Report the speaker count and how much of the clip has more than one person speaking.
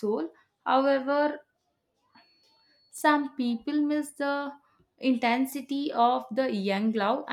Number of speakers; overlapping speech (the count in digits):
1, no overlap